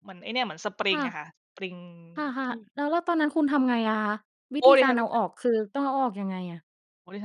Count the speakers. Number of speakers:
2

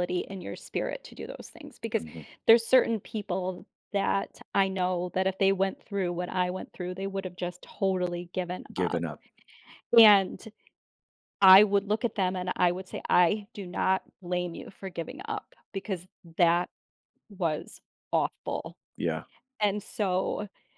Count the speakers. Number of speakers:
2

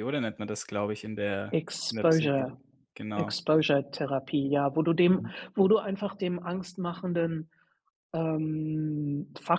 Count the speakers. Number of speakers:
2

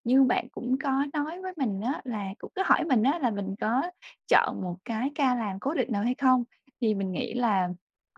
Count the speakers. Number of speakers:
1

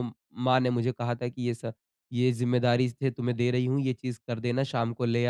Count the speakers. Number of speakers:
1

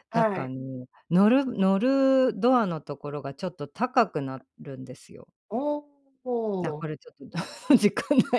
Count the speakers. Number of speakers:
2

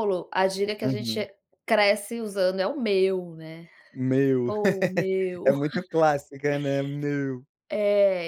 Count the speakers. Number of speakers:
2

